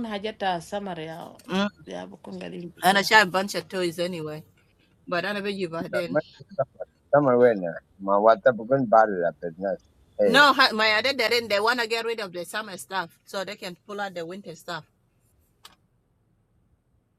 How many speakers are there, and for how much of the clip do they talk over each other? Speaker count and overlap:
3, about 5%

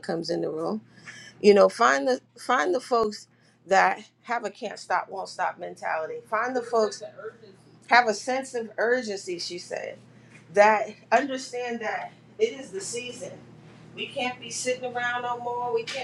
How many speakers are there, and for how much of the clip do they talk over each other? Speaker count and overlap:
1, no overlap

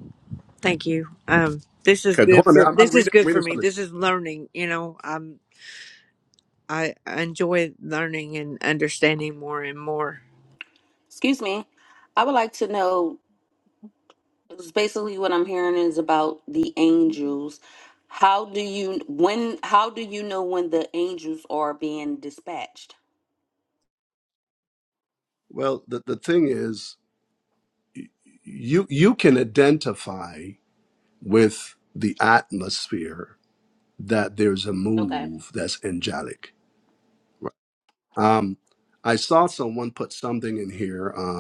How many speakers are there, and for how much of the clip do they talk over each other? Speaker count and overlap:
3, about 4%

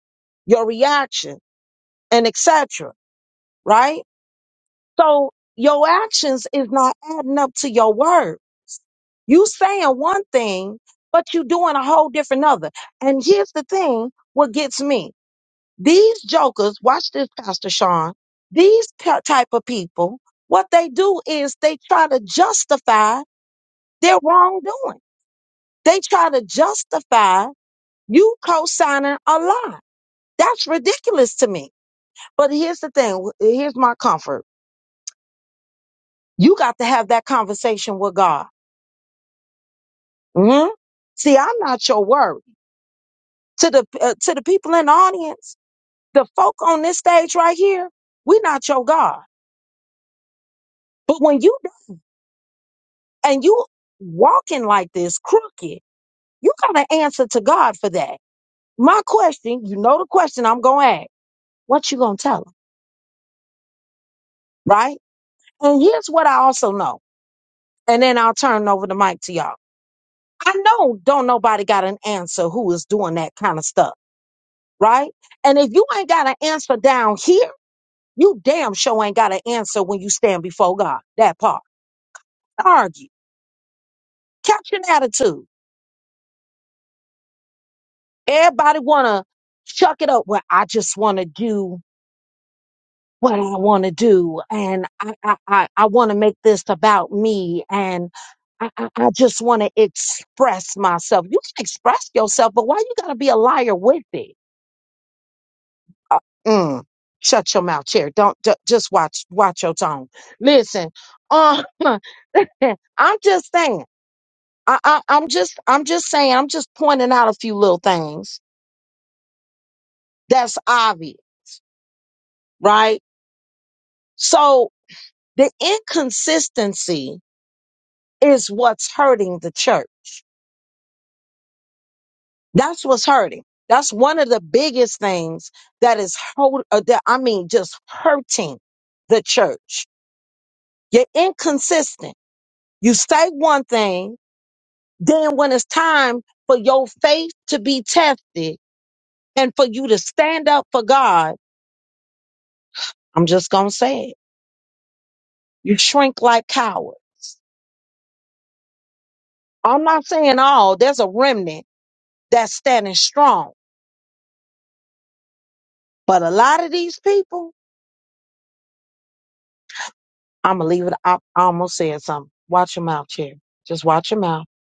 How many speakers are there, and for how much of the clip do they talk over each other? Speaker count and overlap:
1, no overlap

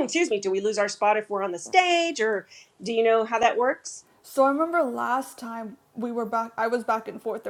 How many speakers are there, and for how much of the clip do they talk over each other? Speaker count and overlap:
2, no overlap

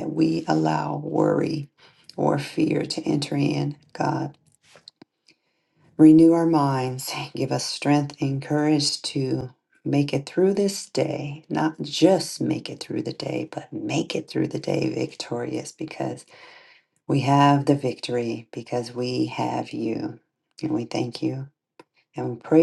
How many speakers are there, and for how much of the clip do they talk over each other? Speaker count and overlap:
1, no overlap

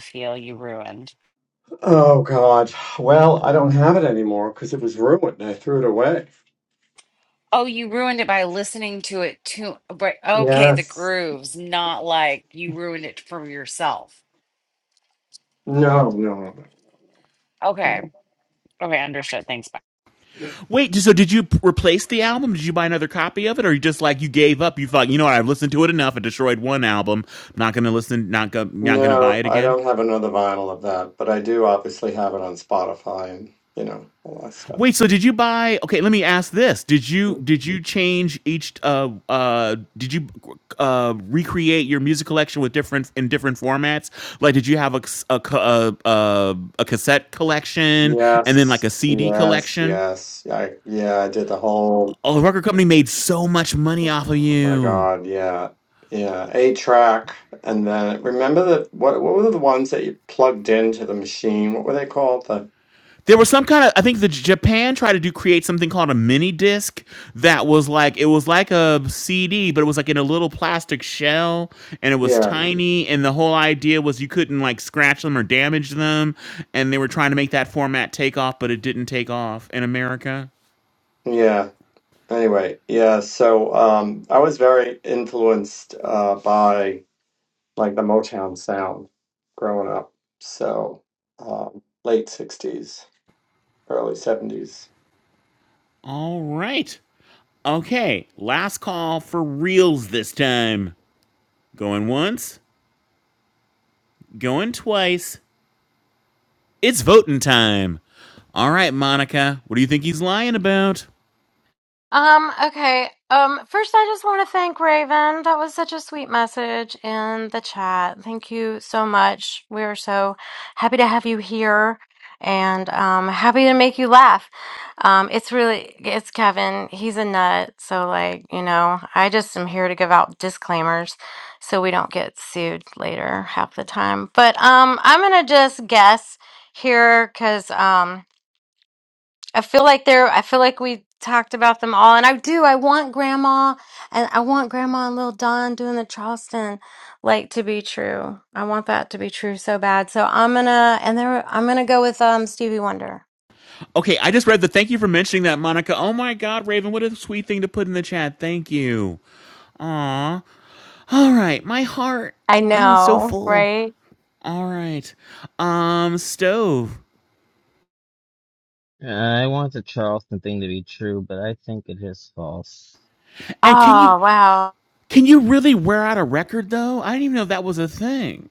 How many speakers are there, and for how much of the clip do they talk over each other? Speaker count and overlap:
5, about 3%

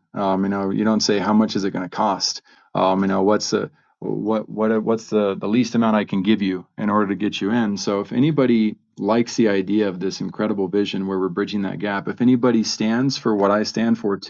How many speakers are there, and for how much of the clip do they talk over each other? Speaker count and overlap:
1, no overlap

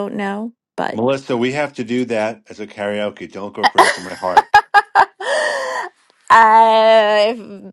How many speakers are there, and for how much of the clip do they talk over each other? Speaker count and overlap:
2, under 1%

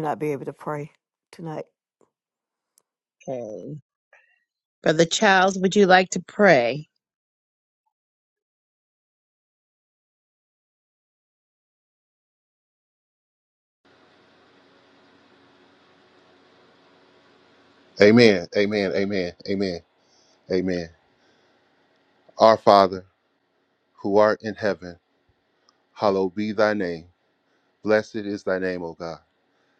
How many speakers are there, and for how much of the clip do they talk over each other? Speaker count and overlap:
3, no overlap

